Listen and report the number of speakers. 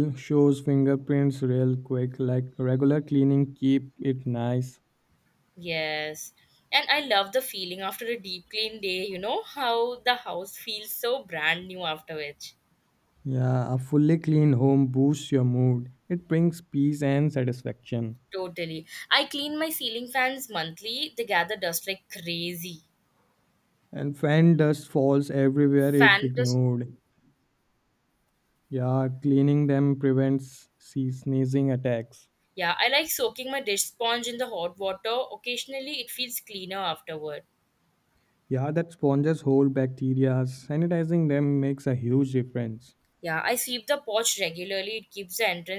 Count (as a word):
two